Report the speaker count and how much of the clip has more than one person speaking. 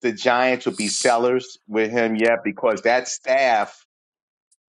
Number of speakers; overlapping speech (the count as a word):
one, no overlap